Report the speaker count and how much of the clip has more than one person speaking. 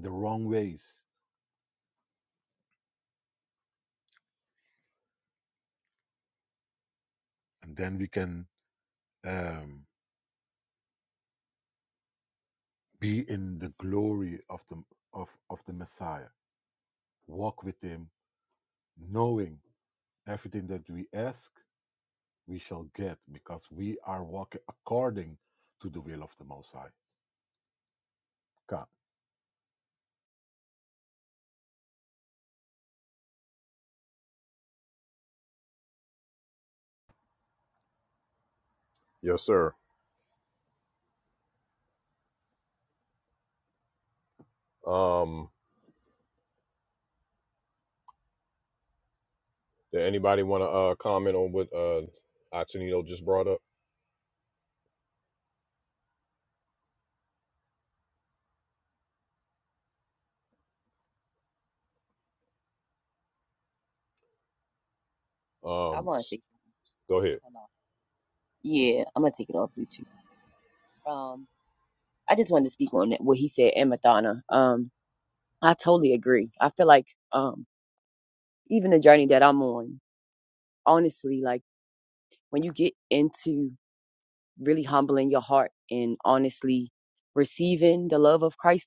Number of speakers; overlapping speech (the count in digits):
3, under 1%